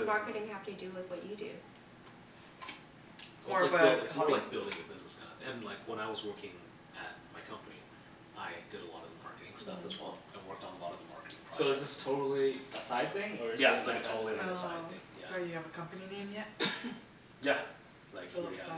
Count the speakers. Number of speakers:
4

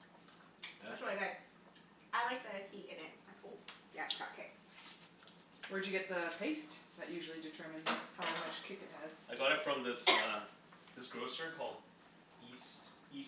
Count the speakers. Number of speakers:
3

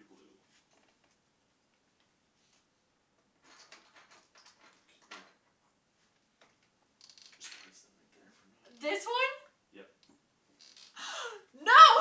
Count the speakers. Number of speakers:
2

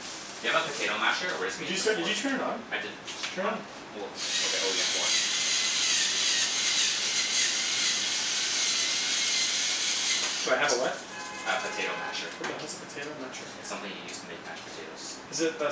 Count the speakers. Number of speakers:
2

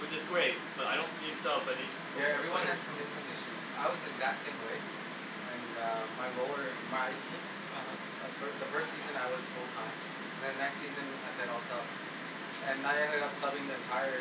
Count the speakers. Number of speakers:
2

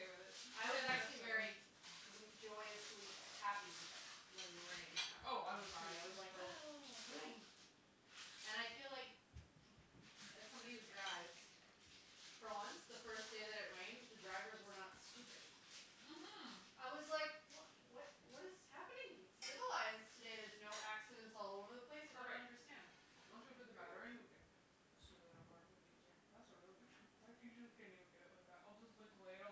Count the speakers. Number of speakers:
2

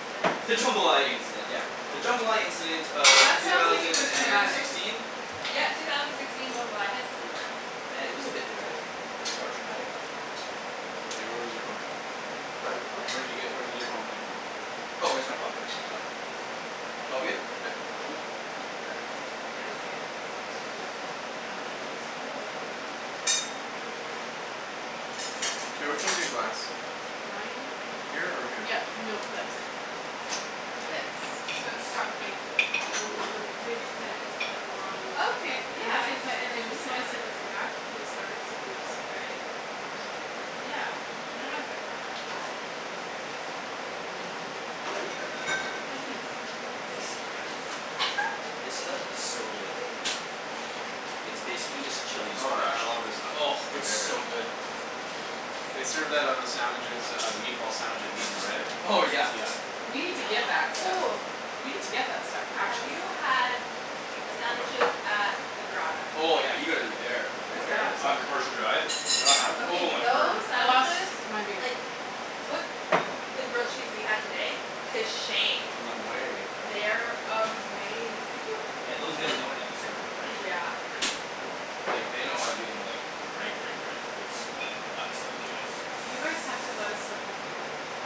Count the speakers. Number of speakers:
4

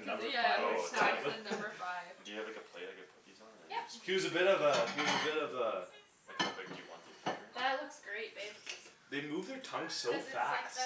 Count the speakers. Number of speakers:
4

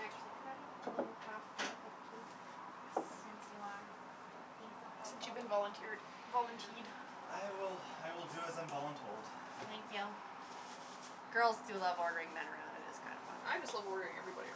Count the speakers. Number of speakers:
3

